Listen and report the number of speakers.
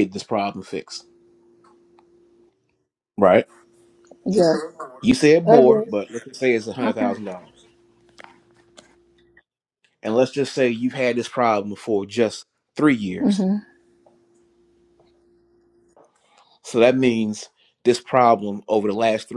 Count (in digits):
2